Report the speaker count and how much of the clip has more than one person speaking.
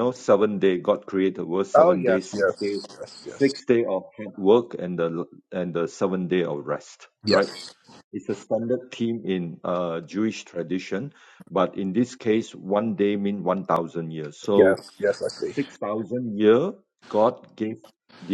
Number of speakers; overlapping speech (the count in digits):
2, about 10%